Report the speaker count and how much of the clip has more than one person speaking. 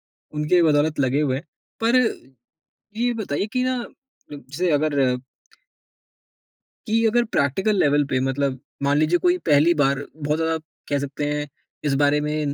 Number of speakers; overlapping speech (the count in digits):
1, no overlap